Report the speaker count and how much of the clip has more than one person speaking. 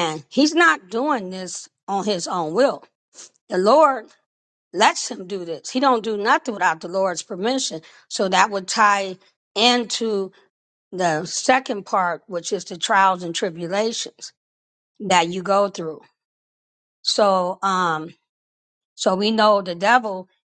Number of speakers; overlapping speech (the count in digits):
1, no overlap